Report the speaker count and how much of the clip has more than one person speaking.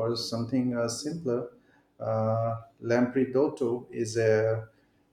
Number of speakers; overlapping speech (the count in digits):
1, no overlap